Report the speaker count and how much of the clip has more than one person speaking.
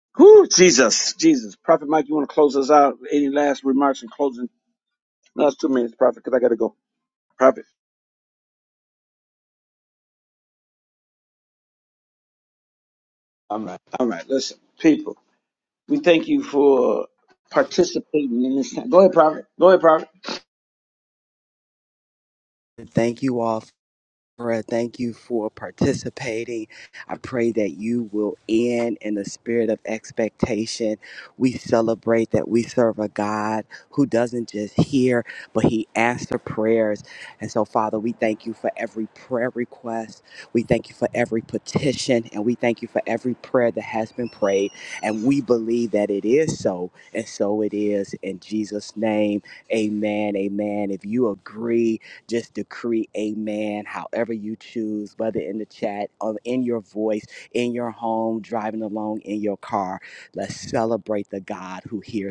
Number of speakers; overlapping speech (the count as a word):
two, no overlap